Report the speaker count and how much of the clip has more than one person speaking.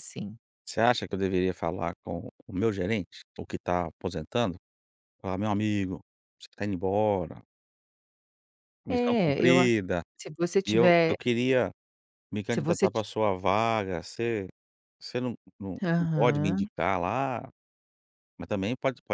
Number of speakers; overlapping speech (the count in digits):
2, about 14%